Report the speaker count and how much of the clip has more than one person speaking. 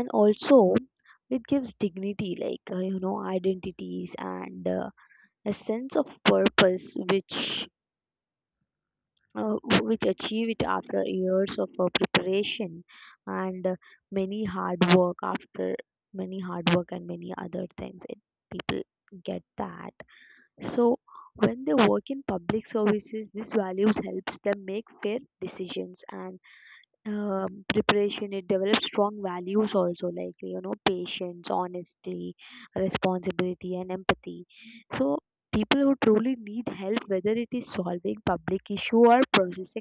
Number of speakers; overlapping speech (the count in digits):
1, no overlap